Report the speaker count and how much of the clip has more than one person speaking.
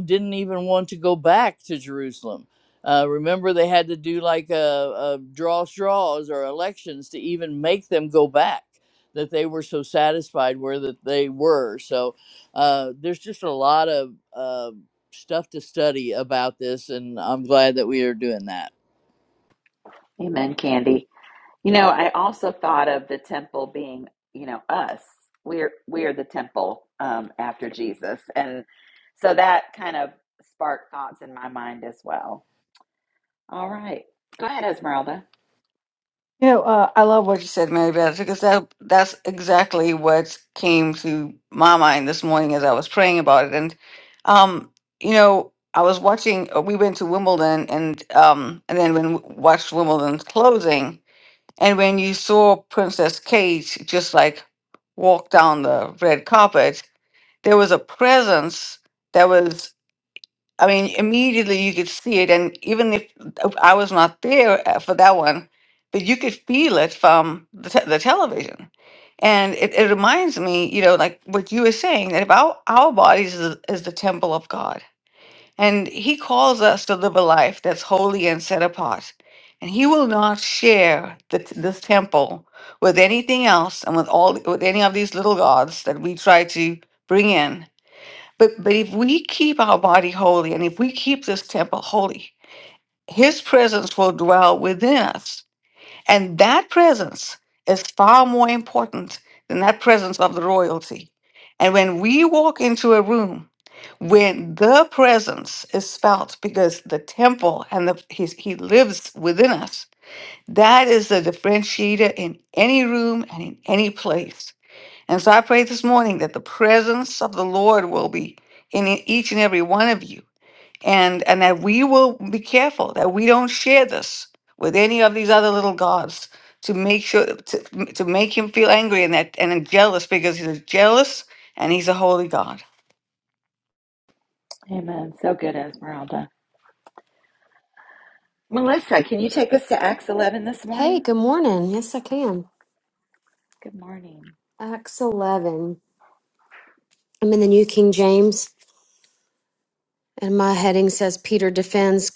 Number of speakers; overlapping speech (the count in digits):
4, under 1%